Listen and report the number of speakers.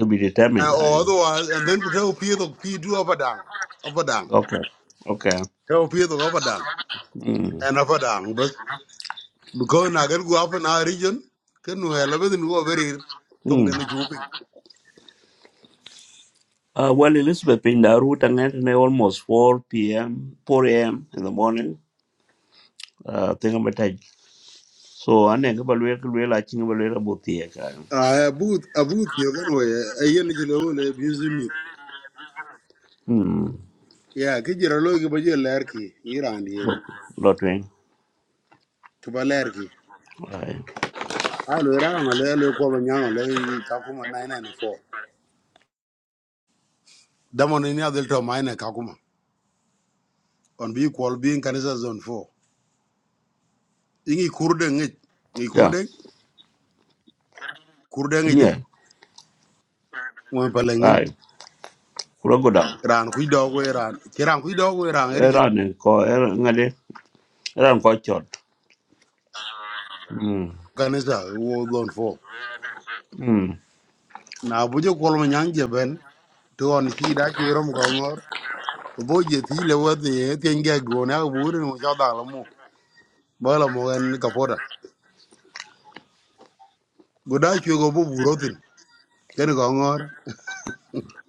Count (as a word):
two